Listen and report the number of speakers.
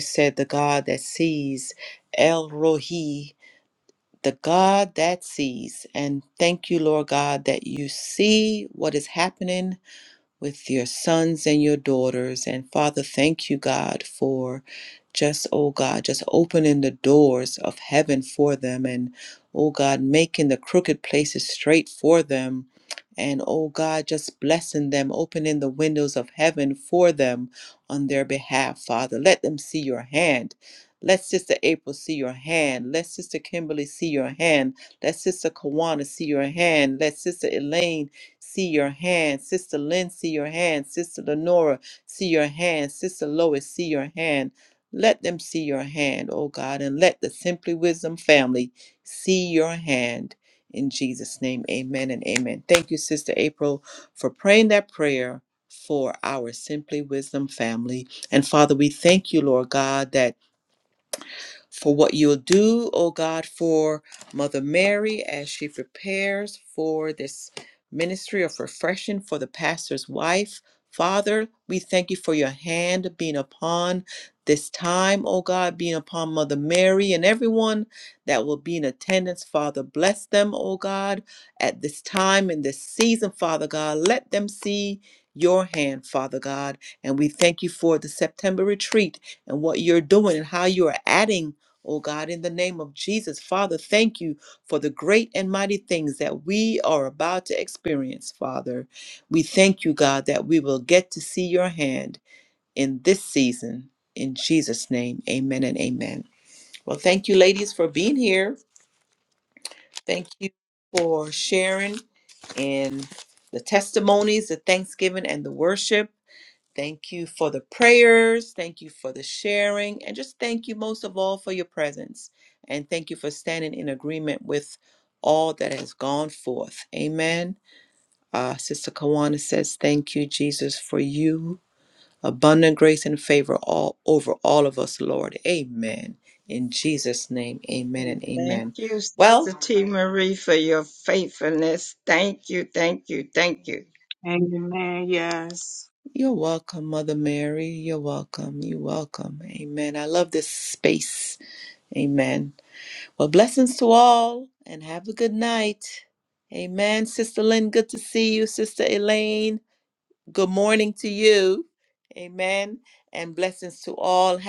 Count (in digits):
3